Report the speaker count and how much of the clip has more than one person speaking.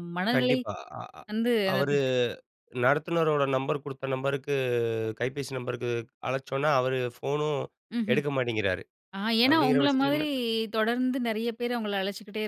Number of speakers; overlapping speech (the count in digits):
2, about 13%